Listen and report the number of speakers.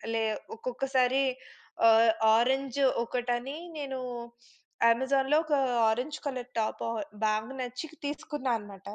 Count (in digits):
1